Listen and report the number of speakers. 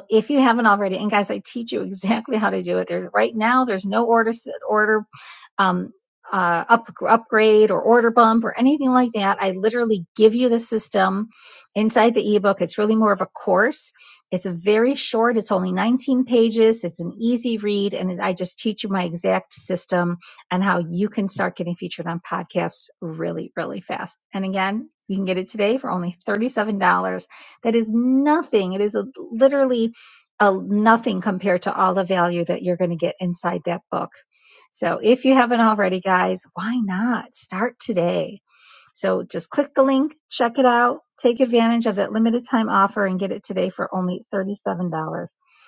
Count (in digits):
1